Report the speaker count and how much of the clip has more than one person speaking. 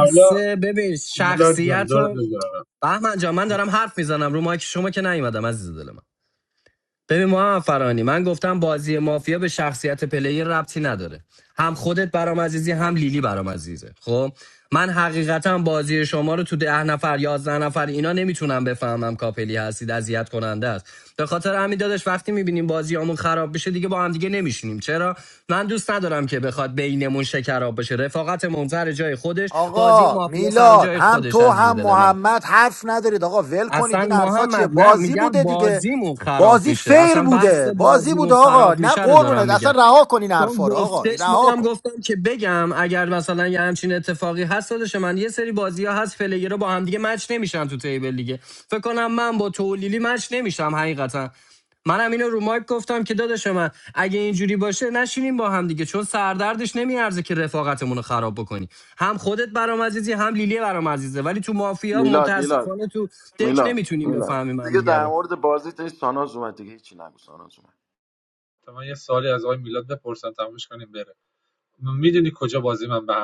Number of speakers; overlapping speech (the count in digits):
4, about 18%